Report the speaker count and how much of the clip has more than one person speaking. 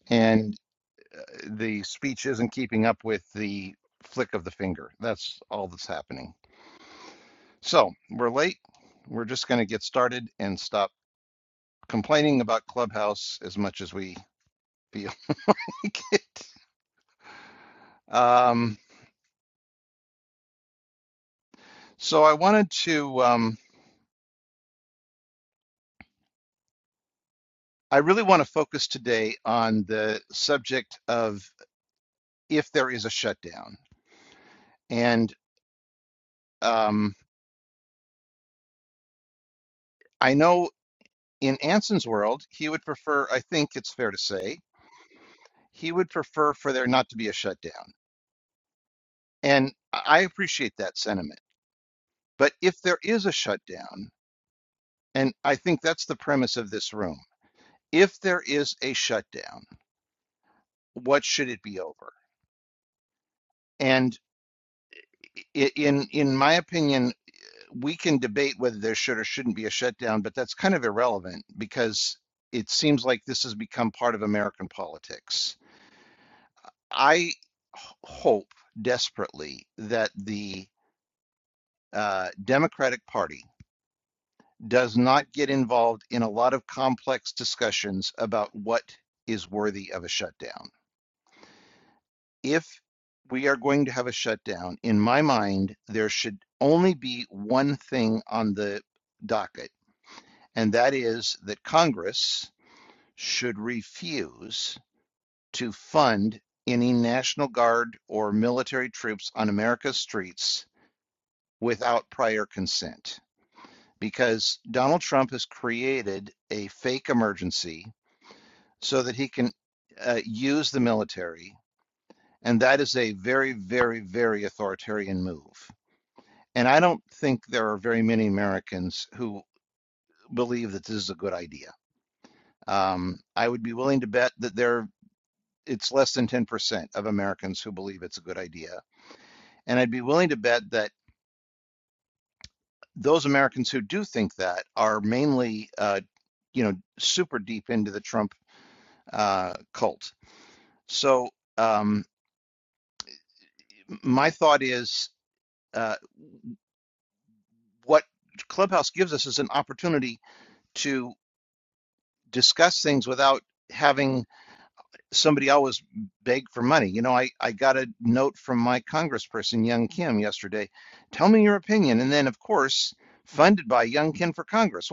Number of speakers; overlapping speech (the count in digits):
1, no overlap